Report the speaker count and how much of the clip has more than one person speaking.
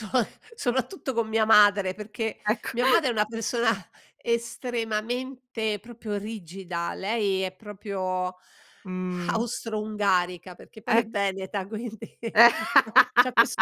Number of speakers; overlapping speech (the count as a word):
two, about 4%